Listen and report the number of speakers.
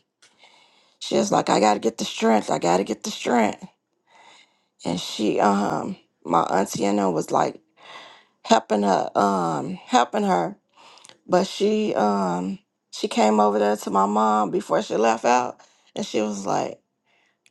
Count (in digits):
1